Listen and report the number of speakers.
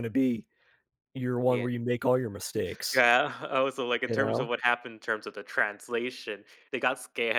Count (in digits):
2